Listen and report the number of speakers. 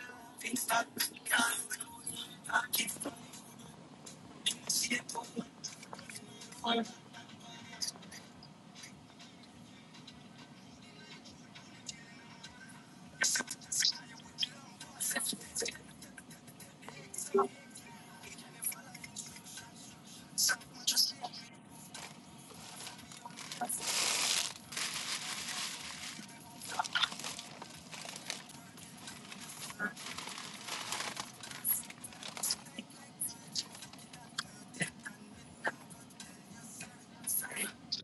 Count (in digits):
0